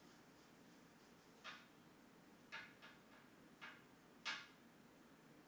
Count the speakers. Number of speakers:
zero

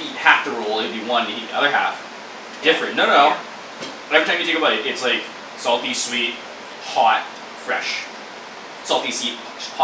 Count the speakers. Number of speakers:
one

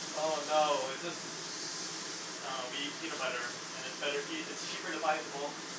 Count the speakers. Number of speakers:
one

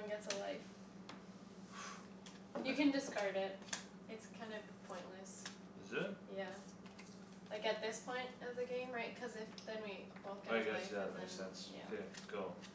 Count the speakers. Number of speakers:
two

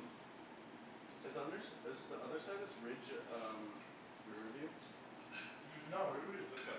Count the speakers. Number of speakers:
two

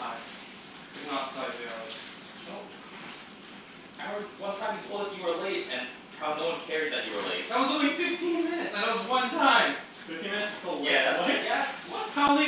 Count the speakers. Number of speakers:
three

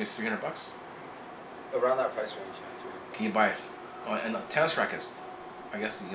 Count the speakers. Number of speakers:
two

